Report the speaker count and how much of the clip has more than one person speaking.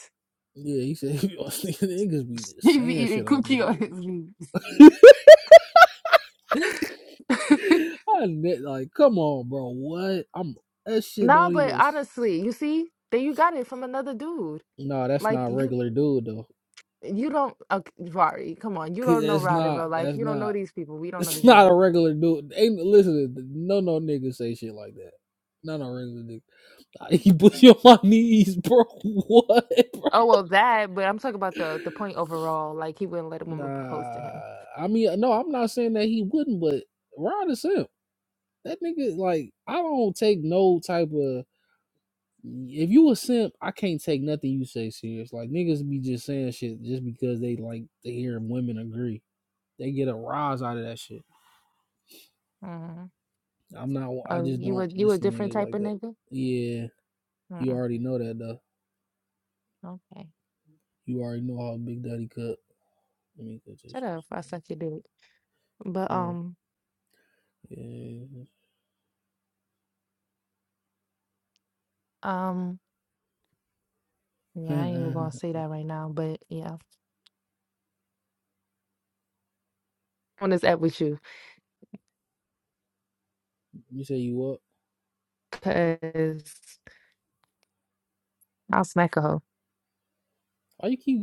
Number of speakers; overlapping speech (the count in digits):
2, about 9%